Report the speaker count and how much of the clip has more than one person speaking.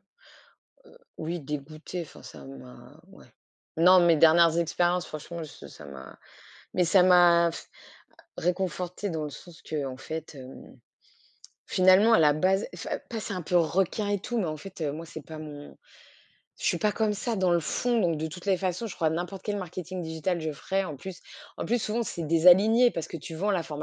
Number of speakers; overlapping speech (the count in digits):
1, no overlap